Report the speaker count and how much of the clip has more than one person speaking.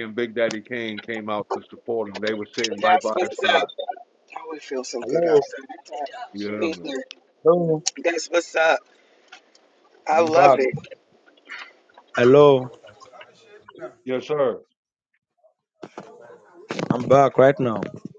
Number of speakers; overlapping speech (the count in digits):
3, about 12%